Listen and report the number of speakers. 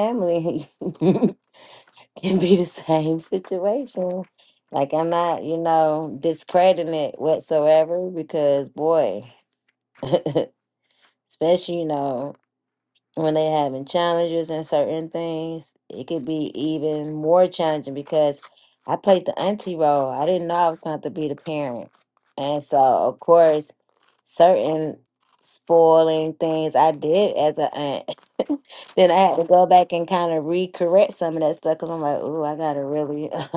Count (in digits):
1